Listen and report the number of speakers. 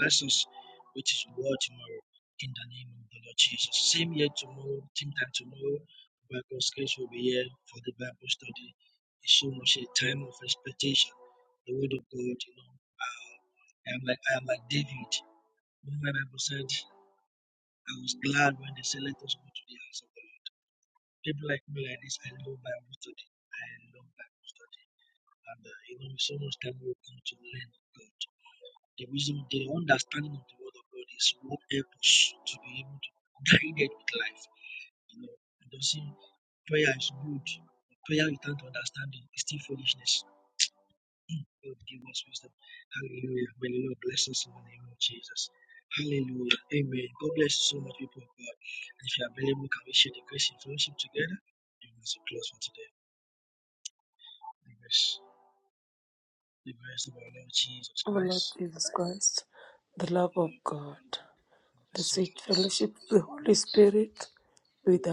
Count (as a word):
two